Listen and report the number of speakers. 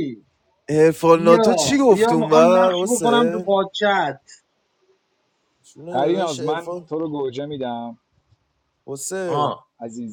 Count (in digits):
3